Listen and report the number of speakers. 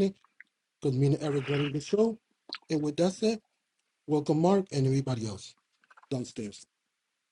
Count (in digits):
1